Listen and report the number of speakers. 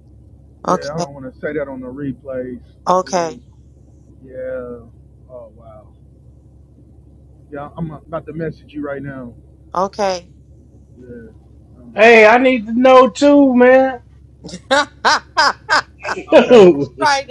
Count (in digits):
3